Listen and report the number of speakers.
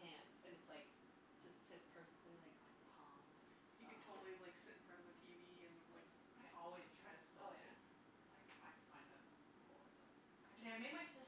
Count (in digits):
3